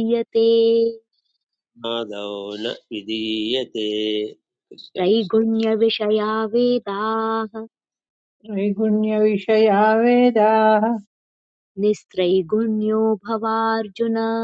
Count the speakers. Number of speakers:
3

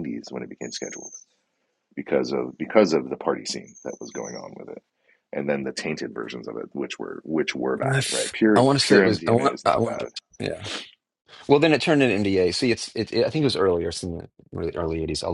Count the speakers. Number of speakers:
2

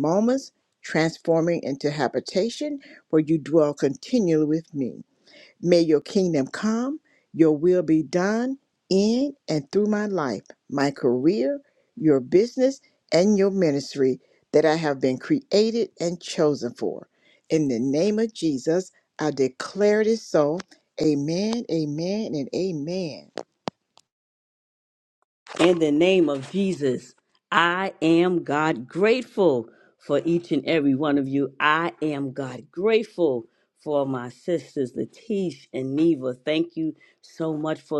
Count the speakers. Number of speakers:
2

